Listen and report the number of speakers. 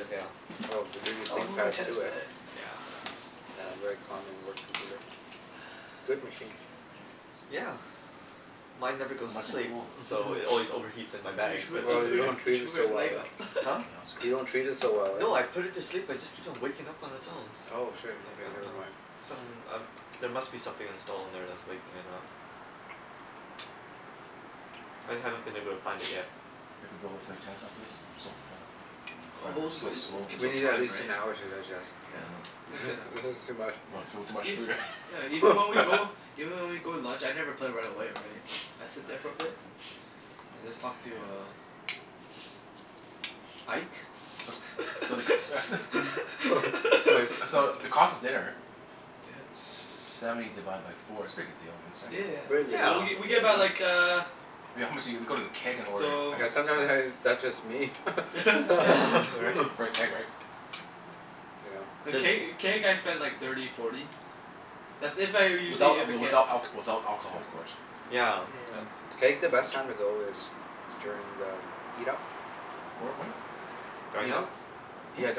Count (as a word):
four